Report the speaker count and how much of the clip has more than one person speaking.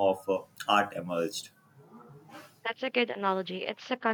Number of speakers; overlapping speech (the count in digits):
2, no overlap